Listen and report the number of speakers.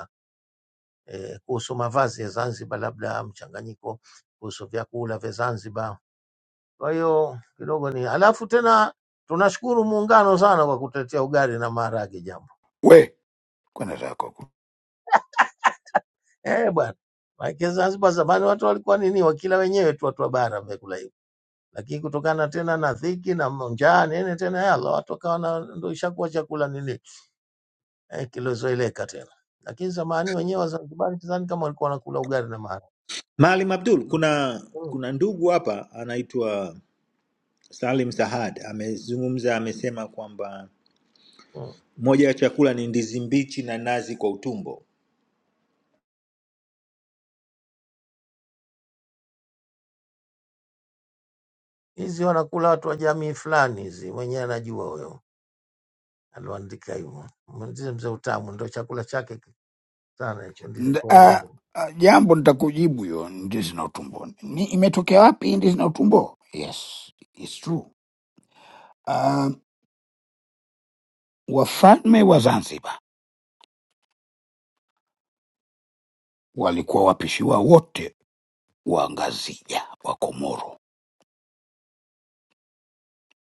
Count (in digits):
3